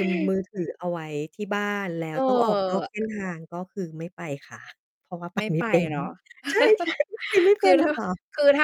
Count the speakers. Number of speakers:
2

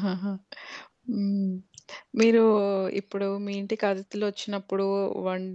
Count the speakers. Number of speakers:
1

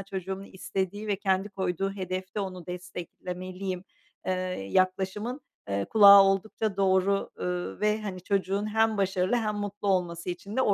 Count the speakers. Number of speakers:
1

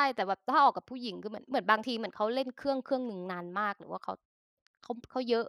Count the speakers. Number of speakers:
1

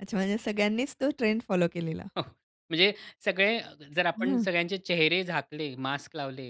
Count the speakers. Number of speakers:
2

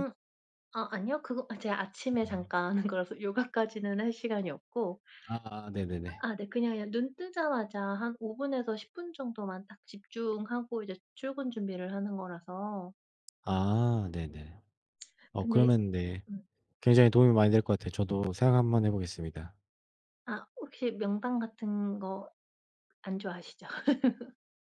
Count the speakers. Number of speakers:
2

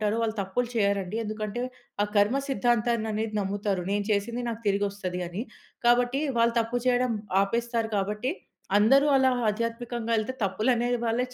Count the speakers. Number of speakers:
1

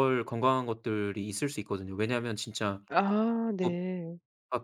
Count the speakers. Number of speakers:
2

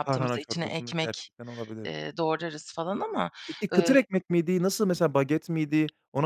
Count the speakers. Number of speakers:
2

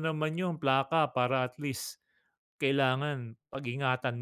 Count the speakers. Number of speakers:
1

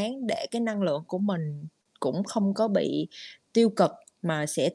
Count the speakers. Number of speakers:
1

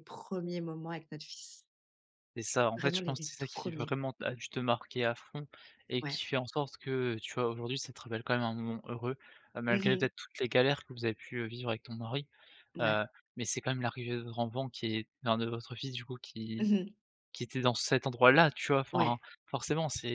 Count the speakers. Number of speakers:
2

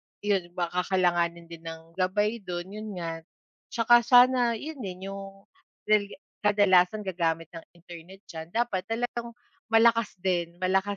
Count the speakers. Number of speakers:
1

